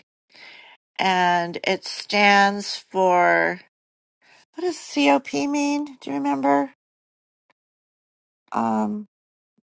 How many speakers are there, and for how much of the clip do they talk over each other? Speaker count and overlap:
1, no overlap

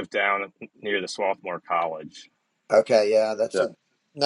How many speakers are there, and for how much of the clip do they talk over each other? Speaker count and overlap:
2, about 4%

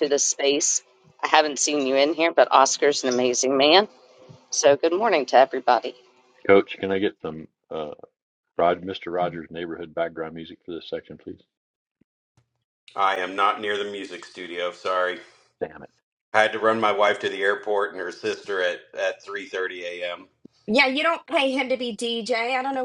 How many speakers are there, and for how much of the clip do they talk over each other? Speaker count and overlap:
4, no overlap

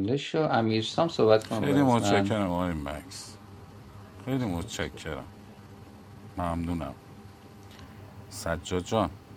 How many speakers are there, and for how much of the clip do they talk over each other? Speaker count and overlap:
2, about 11%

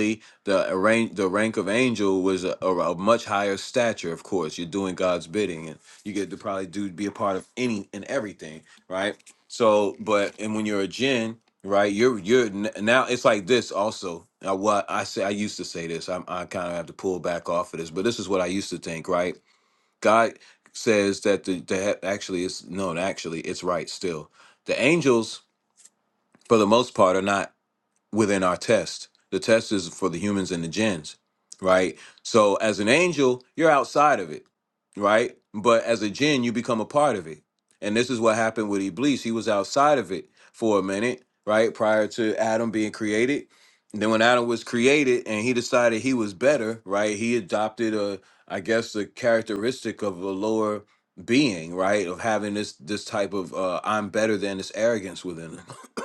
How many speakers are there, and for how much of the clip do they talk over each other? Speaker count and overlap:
1, no overlap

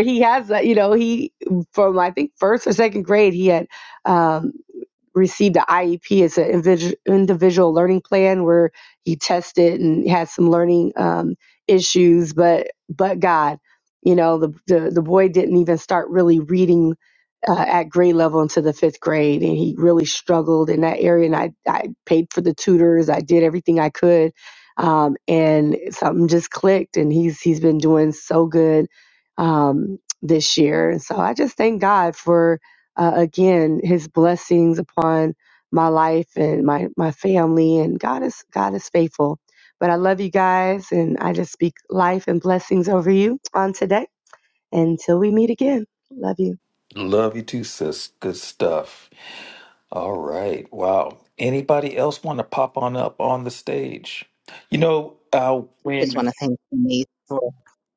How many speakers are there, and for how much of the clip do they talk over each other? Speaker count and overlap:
3, under 1%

